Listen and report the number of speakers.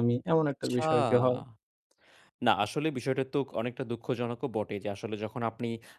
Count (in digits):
2